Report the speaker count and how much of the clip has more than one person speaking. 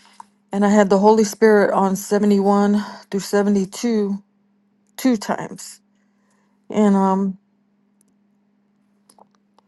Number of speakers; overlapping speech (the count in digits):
1, no overlap